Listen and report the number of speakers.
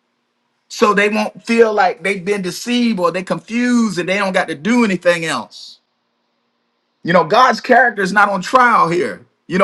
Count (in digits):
1